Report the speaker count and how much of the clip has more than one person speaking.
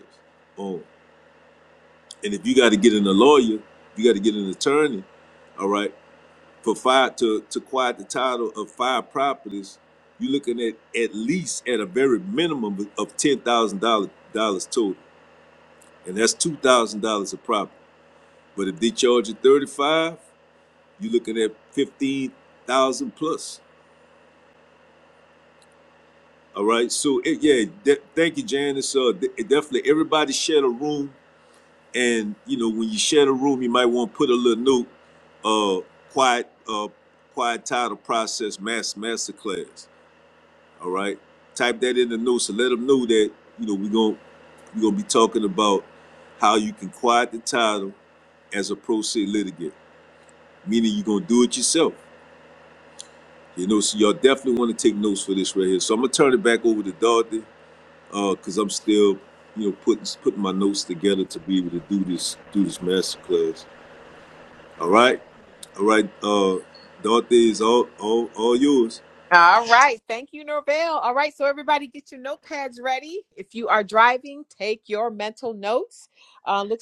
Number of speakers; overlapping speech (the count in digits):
2, no overlap